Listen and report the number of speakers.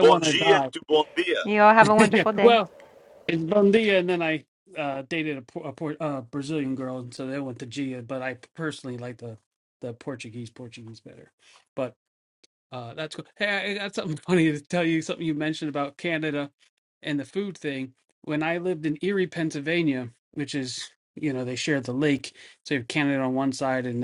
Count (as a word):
three